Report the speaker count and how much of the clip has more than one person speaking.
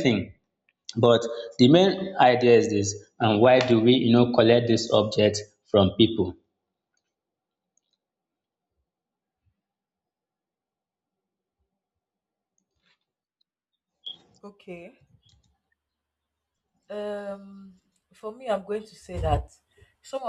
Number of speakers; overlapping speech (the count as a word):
two, no overlap